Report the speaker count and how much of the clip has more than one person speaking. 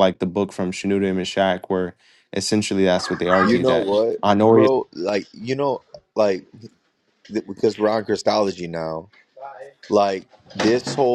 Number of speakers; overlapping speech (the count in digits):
2, about 5%